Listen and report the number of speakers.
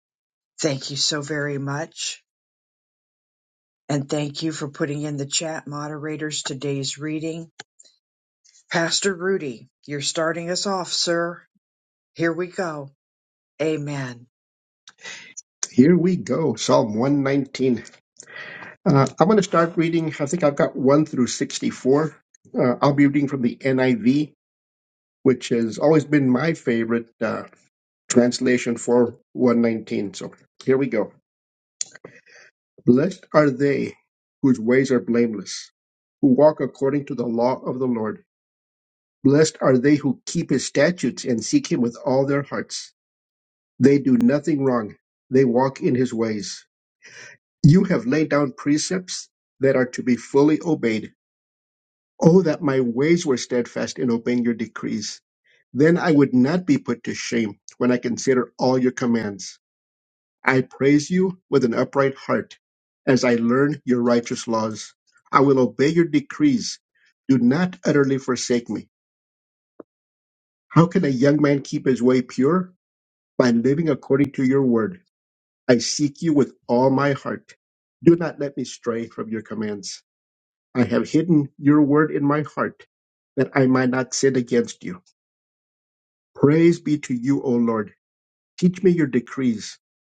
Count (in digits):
2